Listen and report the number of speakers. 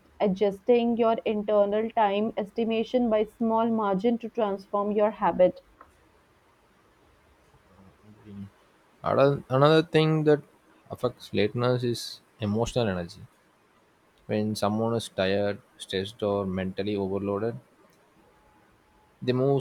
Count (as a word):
two